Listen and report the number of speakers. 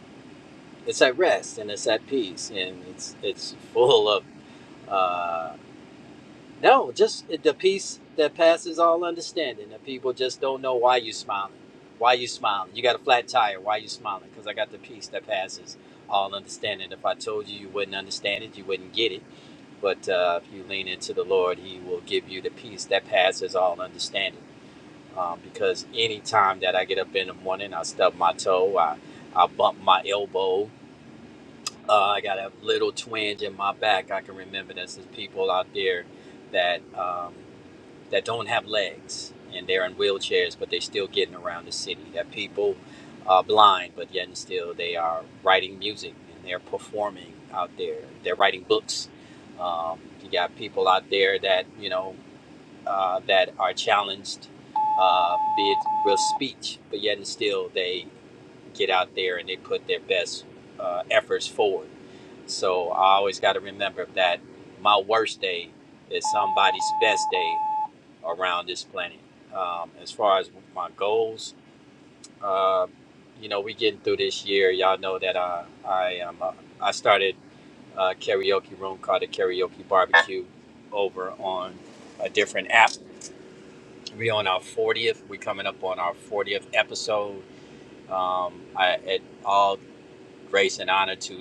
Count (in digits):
1